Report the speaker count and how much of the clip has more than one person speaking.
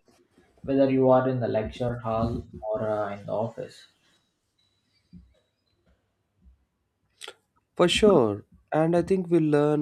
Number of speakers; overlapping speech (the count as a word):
two, no overlap